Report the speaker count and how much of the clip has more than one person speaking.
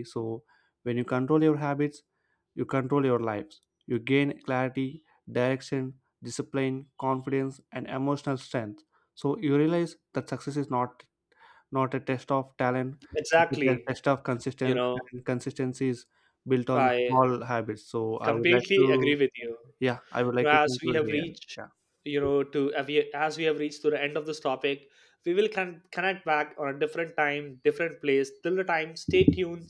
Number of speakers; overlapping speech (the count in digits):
2, about 12%